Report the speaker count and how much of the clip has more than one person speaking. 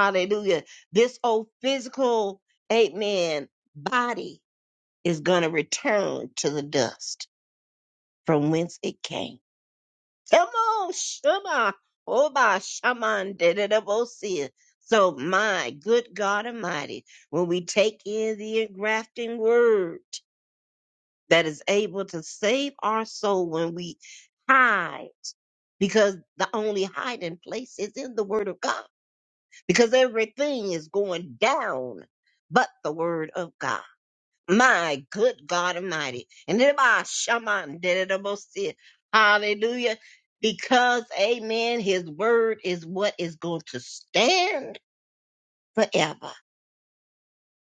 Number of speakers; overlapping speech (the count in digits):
1, no overlap